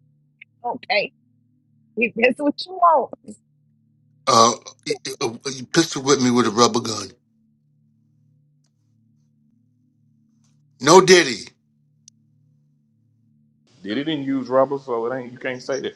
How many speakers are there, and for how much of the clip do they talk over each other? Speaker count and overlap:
3, no overlap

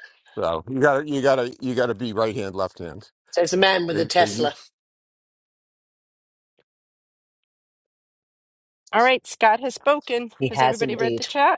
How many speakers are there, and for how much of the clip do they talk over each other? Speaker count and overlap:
3, about 13%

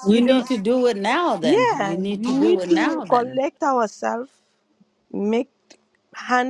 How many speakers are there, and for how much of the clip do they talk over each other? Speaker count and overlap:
2, about 37%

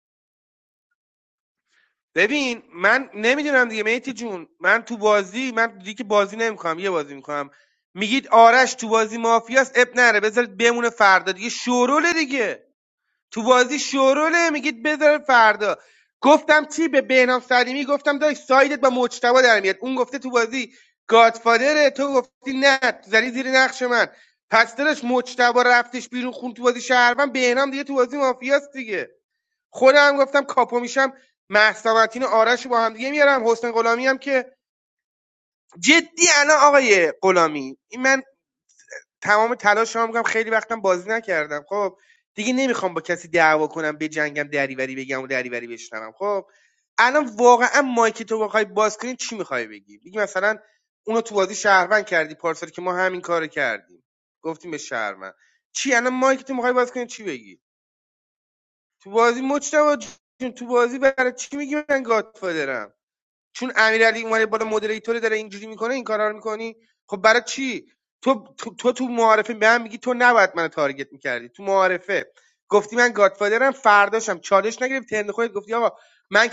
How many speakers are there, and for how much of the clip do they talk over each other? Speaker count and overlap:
1, no overlap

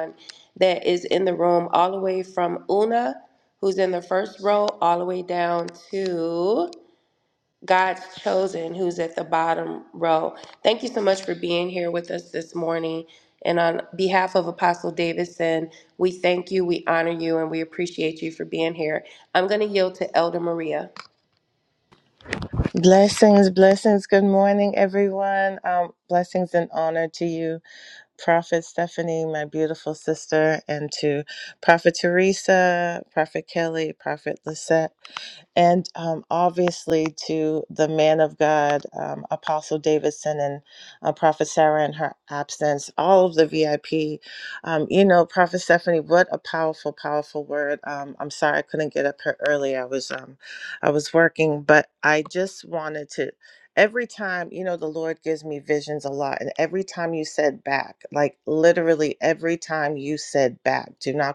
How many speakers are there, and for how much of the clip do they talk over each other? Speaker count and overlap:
2, no overlap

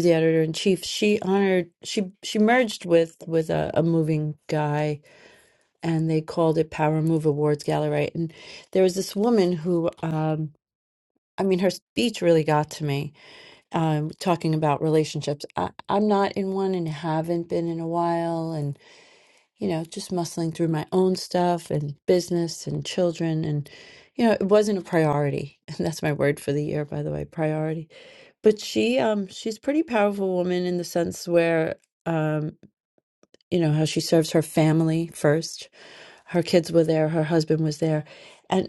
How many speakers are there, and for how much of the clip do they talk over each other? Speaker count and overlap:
1, no overlap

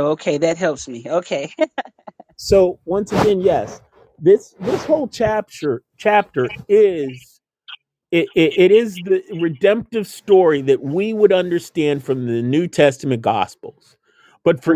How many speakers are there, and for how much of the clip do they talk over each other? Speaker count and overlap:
2, about 1%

